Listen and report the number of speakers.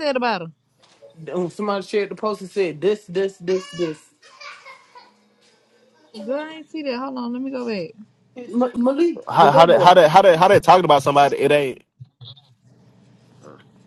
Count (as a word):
three